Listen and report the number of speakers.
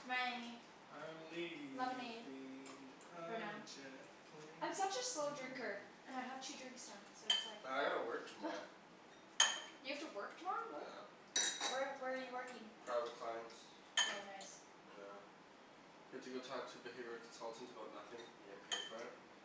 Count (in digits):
3